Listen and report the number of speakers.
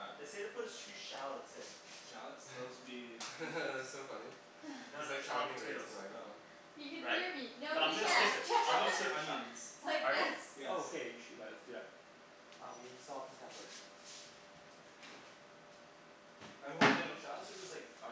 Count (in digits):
4